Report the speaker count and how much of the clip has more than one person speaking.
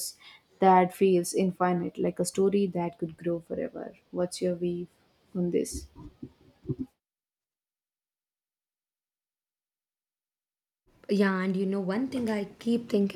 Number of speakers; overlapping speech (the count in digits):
2, no overlap